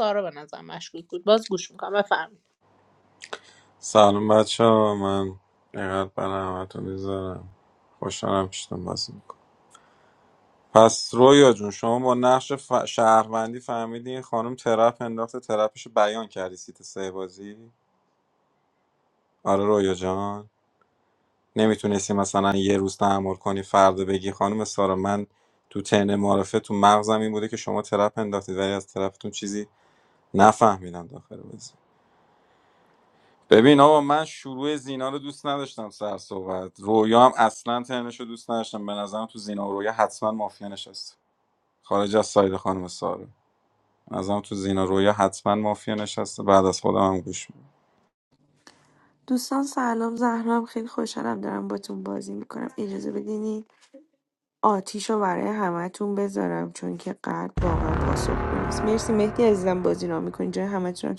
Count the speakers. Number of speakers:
3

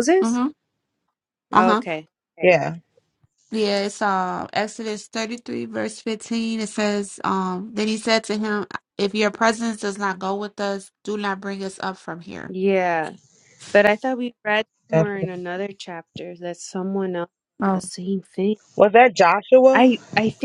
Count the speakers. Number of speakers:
3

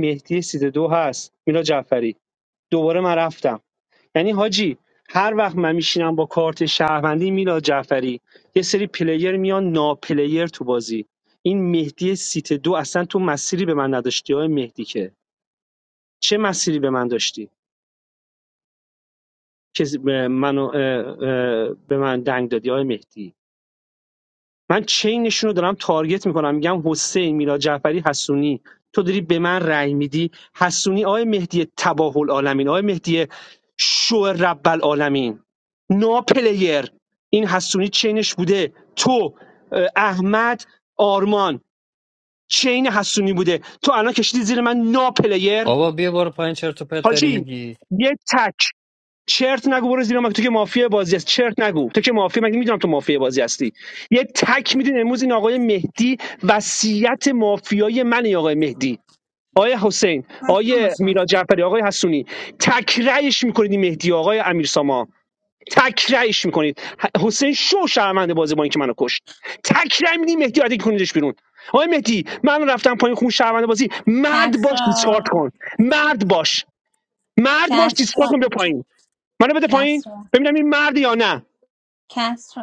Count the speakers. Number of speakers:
3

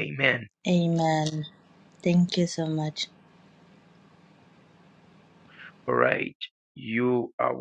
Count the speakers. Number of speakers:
2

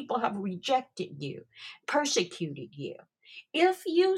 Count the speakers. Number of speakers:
1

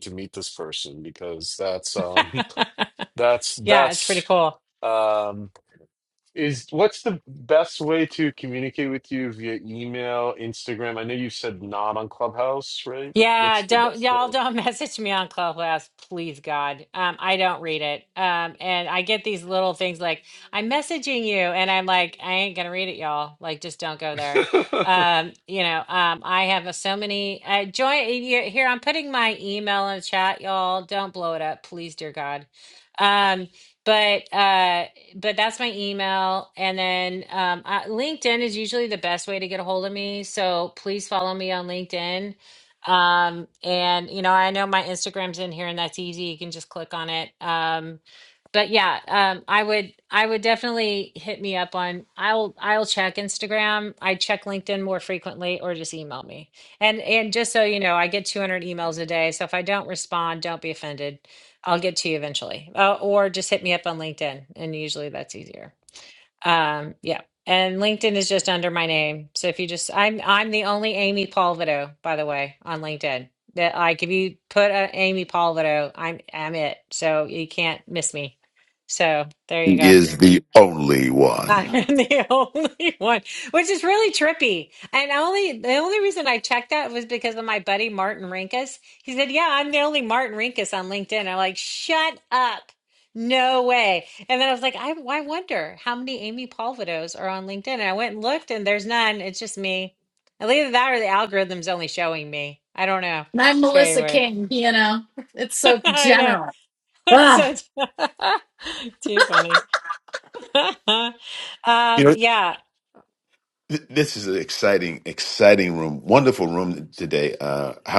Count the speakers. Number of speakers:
4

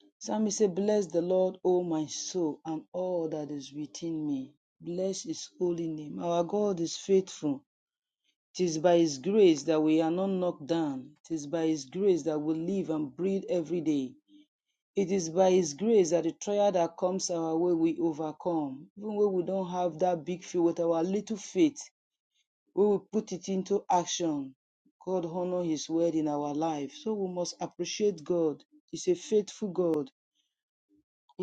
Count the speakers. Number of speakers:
1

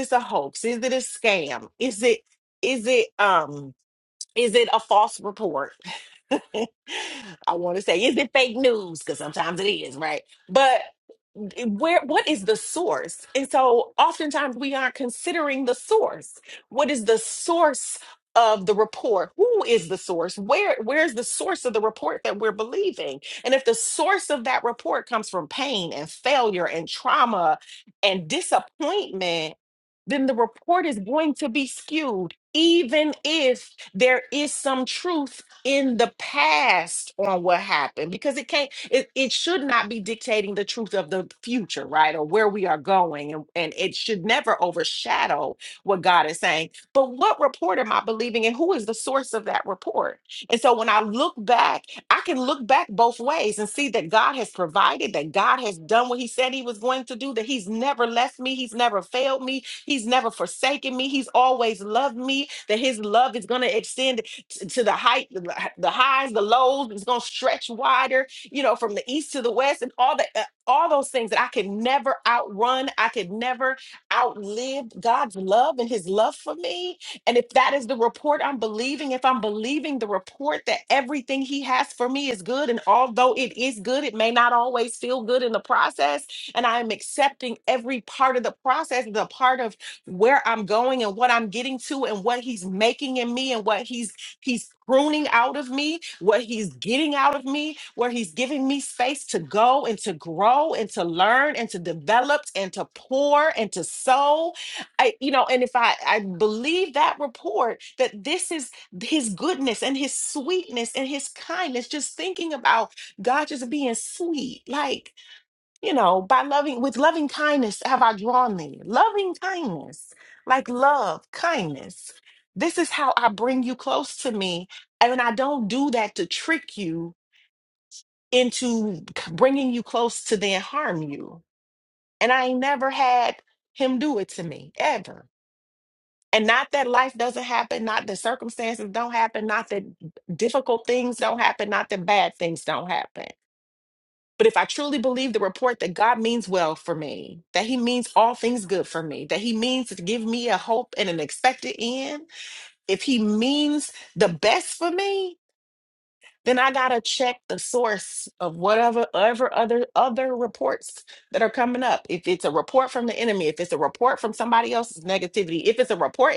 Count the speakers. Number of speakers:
1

